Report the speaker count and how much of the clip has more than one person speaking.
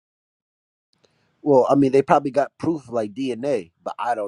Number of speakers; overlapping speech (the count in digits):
1, no overlap